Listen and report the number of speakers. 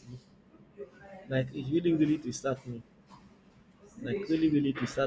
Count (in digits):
1